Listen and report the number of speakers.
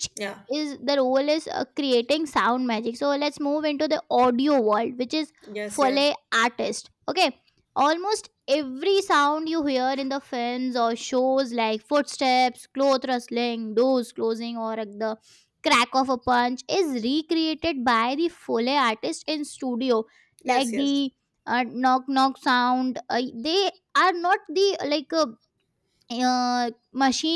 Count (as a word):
two